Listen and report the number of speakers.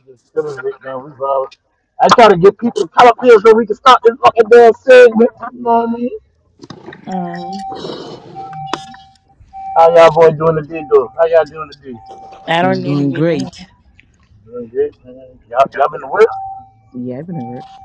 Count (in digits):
3